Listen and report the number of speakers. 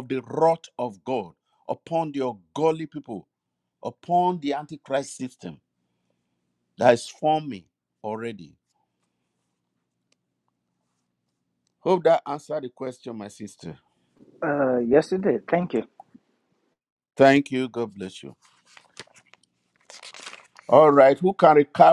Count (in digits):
2